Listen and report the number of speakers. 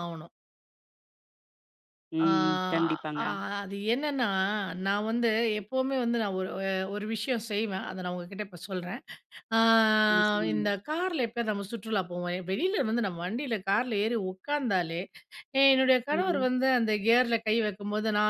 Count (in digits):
2